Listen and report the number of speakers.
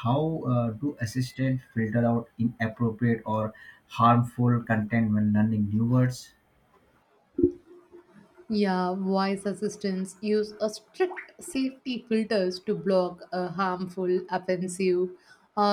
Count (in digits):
2